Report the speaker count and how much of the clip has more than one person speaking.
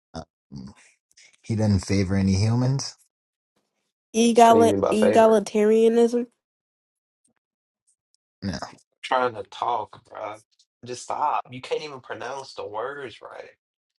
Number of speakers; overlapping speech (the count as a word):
three, about 6%